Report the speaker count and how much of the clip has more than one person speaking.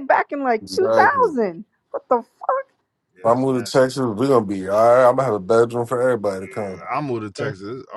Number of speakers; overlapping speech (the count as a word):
three, about 19%